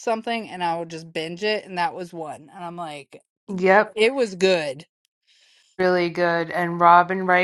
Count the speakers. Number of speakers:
two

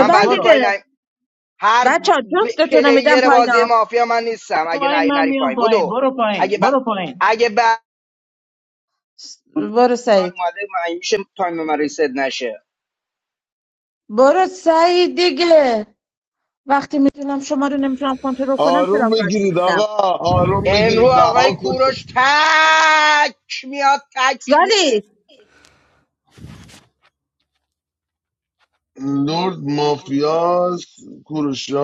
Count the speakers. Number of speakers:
four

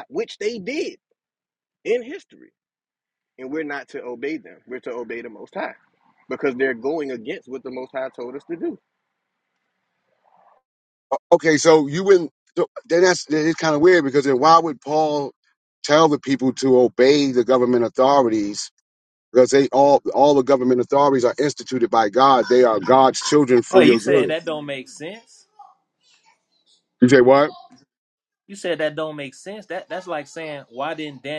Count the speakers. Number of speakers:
three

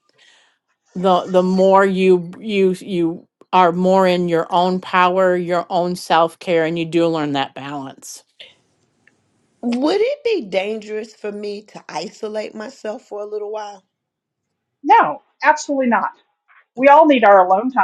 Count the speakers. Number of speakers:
three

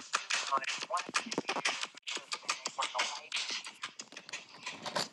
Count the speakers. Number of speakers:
zero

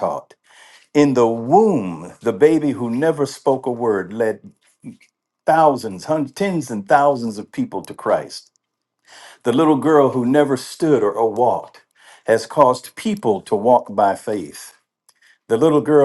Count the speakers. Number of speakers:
one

